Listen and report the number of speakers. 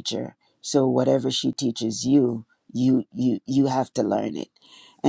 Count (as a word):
one